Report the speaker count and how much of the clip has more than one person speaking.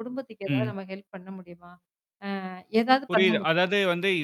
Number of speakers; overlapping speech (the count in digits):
2, about 15%